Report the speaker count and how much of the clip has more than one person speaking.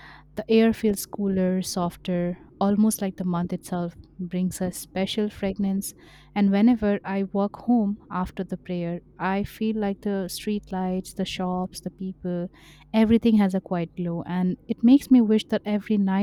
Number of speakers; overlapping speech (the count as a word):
one, no overlap